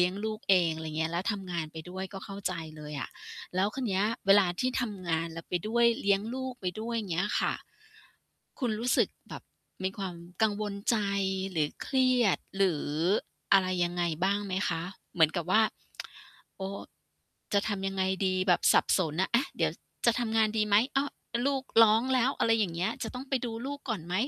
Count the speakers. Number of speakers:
one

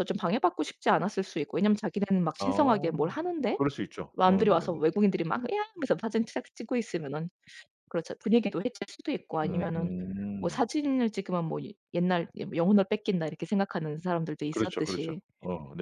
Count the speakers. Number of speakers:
two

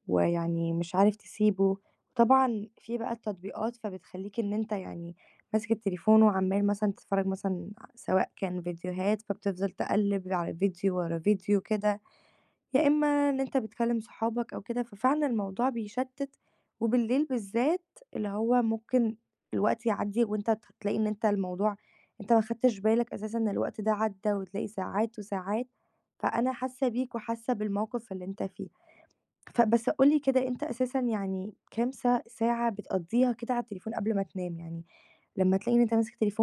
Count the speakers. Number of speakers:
one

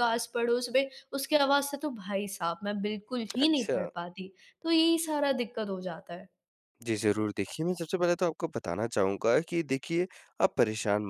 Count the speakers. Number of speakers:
two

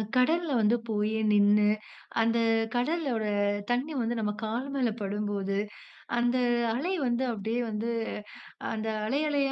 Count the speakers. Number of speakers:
one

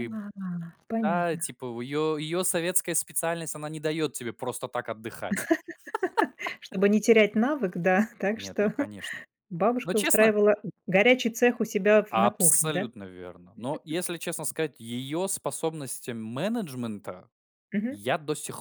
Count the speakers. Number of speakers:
two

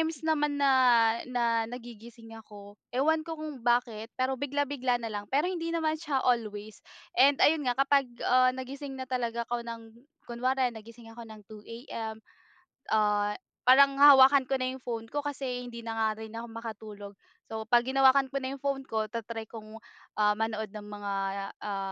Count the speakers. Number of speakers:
one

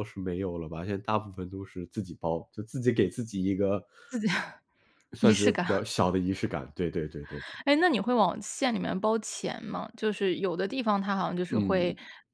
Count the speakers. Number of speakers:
two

